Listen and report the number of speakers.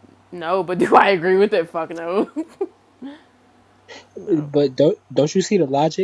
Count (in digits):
2